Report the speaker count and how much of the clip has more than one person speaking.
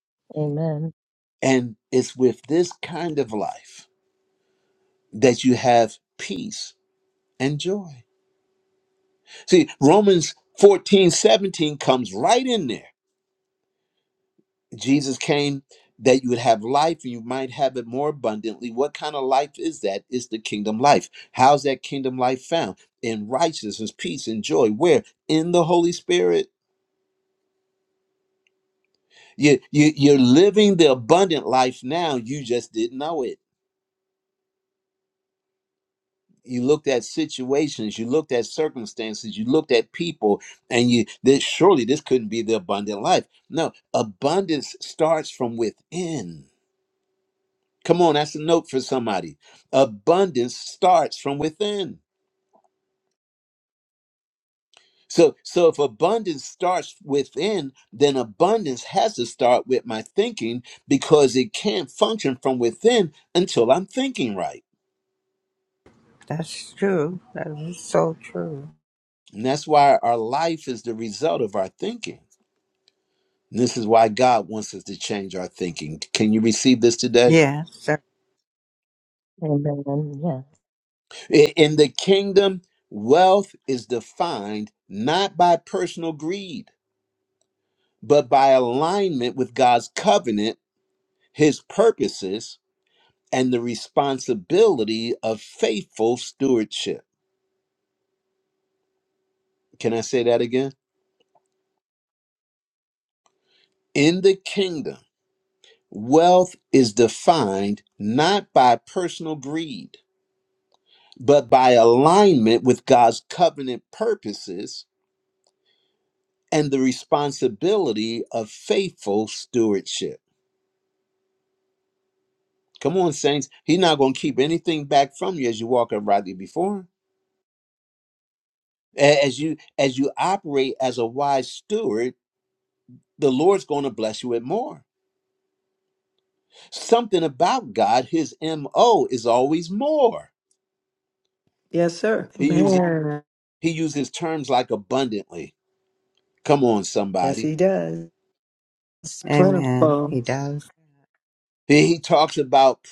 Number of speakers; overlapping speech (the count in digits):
4, about 1%